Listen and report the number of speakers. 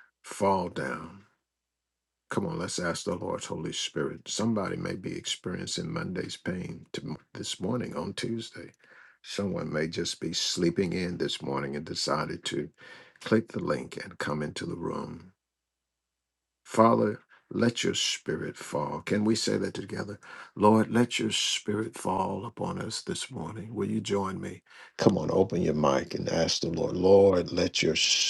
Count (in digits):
1